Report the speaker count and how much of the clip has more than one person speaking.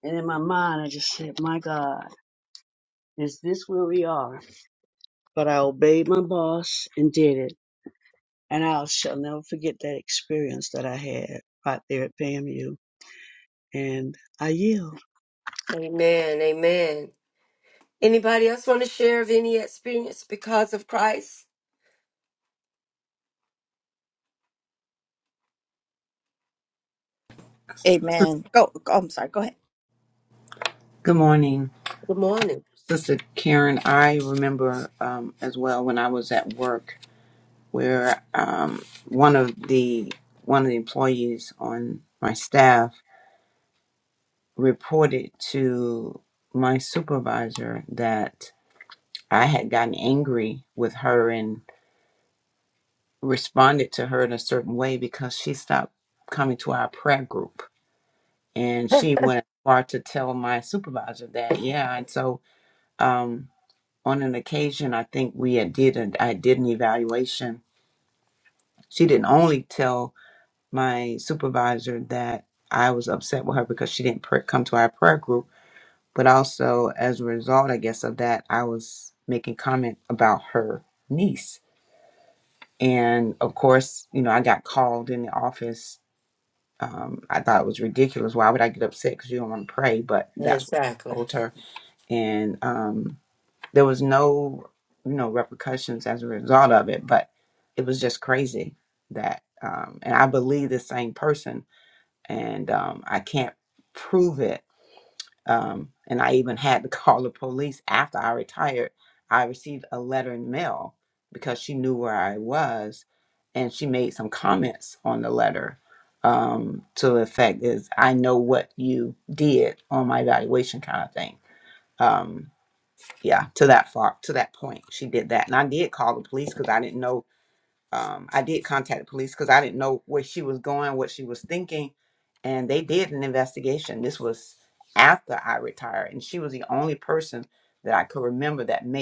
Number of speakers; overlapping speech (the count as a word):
four, under 1%